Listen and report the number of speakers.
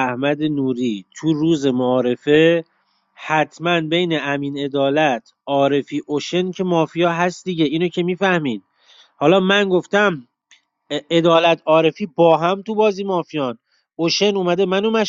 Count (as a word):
one